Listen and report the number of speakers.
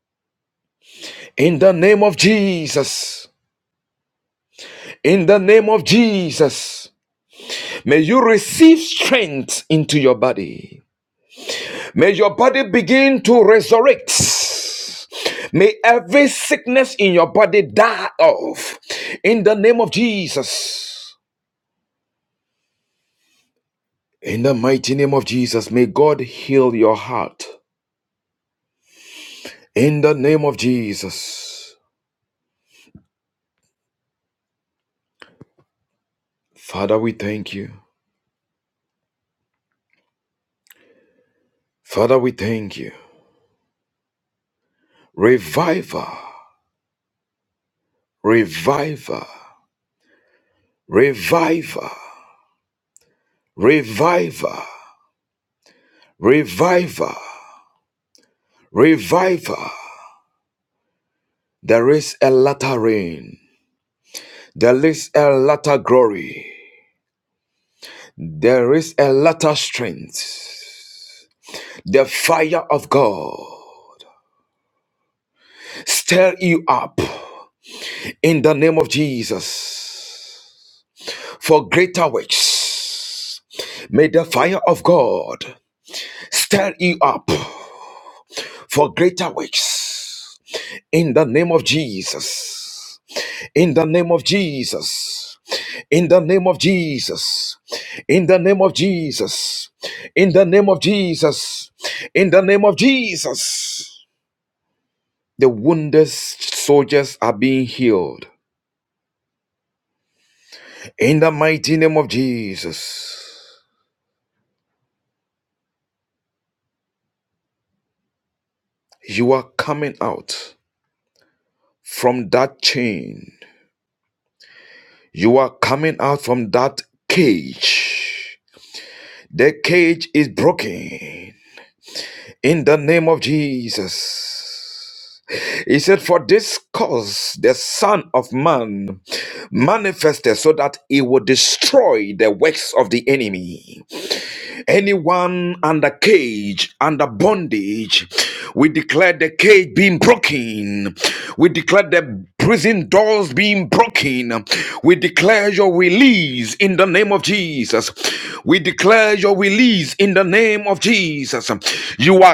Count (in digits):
1